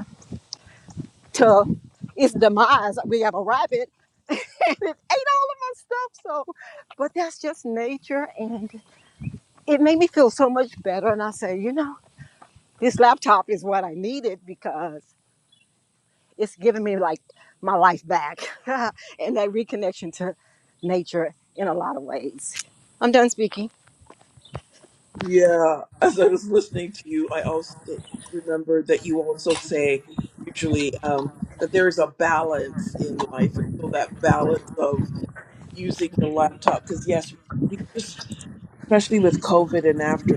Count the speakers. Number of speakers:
2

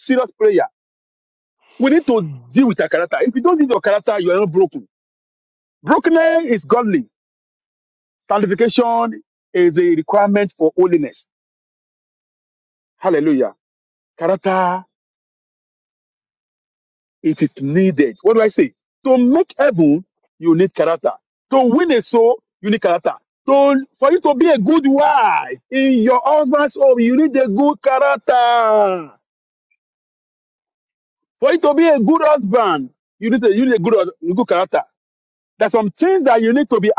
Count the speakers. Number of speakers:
1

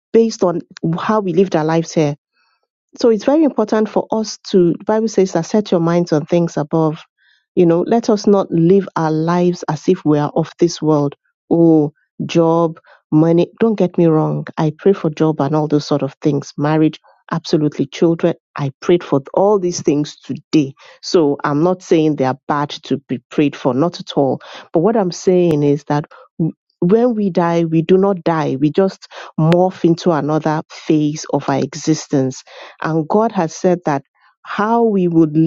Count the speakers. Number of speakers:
1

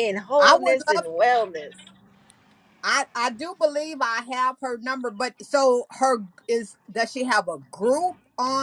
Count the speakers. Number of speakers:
2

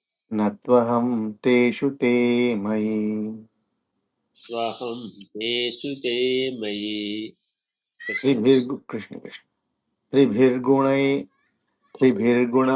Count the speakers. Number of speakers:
2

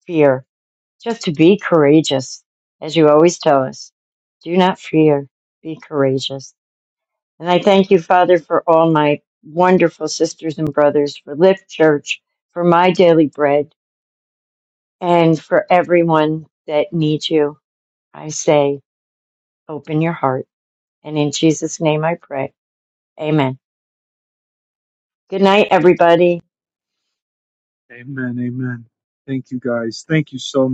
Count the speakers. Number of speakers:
2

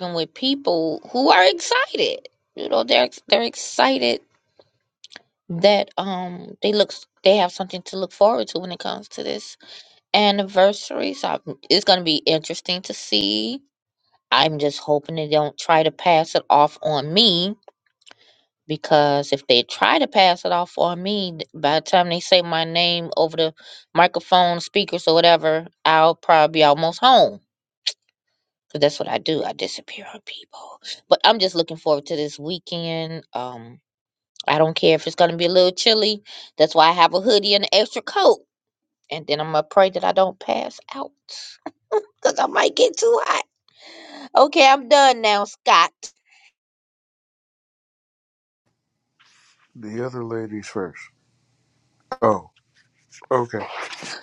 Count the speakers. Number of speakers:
2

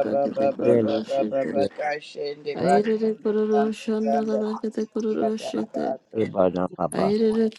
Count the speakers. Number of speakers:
3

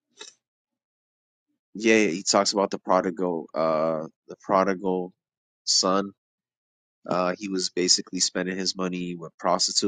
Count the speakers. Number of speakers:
1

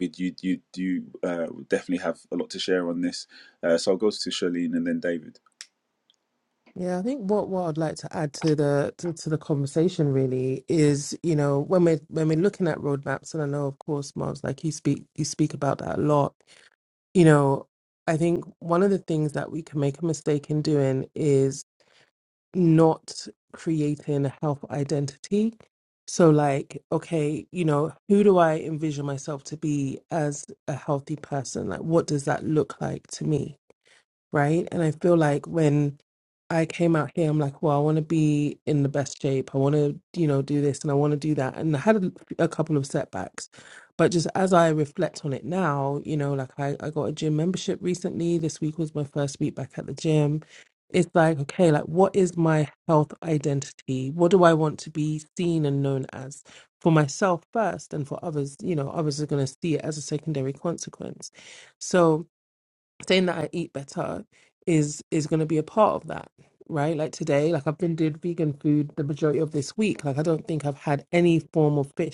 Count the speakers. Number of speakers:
2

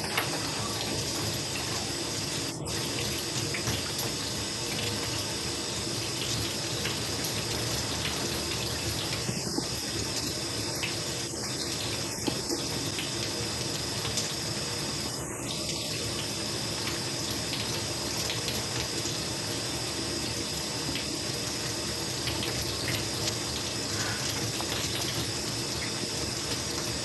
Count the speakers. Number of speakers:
0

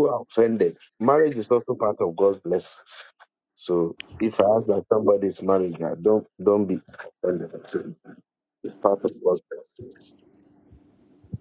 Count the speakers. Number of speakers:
1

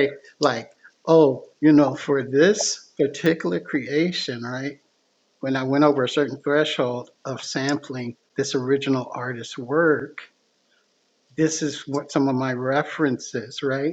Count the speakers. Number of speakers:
1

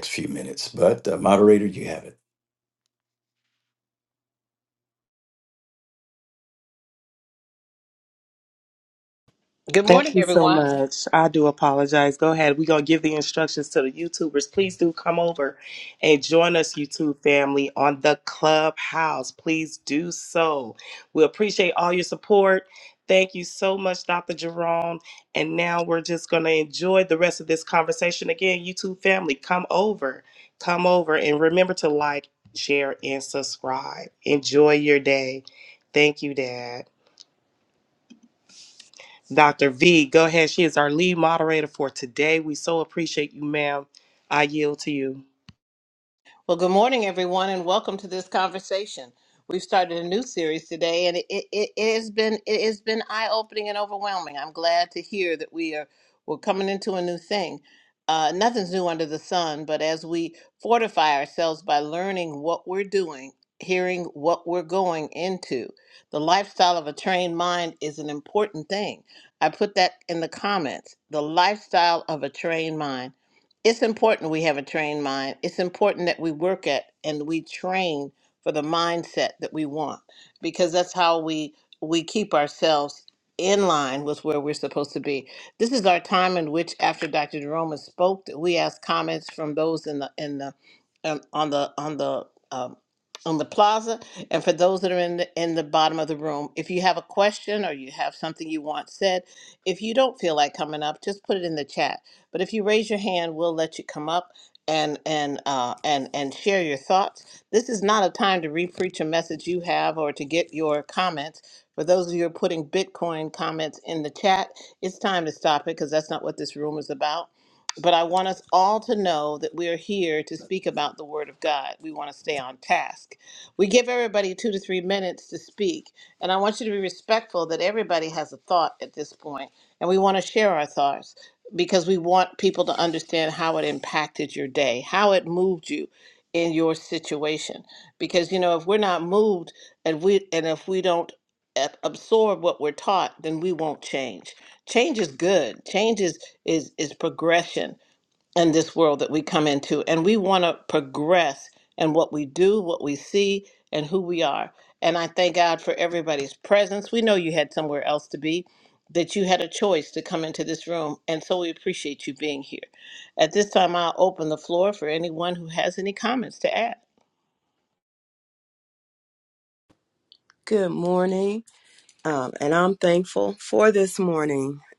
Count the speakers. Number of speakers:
4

